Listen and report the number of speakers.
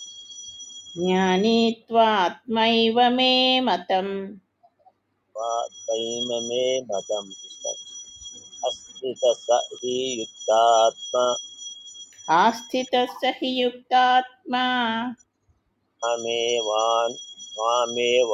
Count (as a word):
two